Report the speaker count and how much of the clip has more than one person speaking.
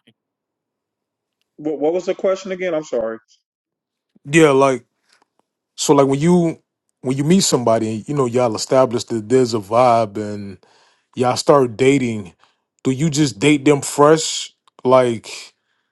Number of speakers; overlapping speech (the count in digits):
2, no overlap